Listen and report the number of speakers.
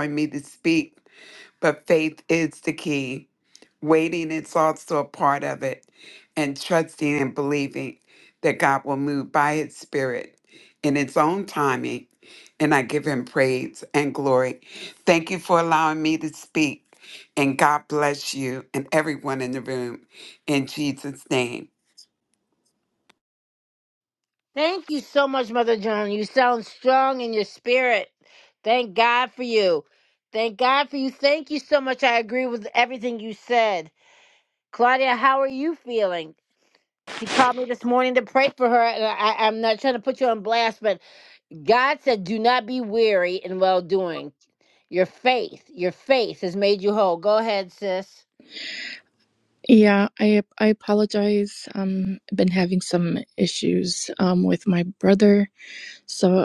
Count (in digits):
3